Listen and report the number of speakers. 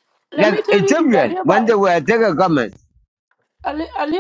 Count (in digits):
2